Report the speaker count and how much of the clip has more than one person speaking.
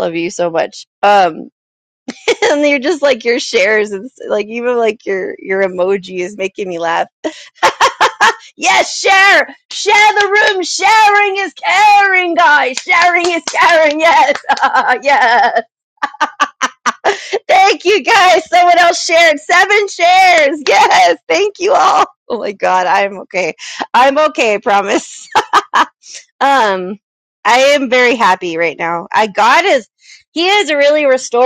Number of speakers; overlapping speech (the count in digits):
1, no overlap